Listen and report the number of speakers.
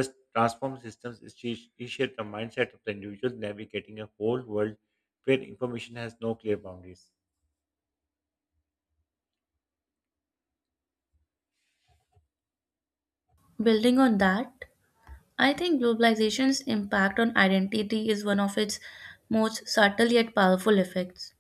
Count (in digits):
2